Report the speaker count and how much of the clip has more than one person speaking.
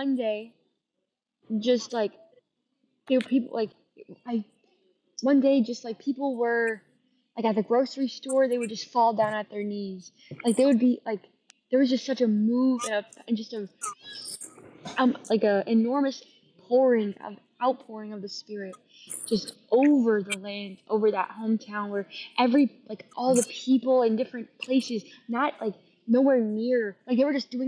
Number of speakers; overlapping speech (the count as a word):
one, no overlap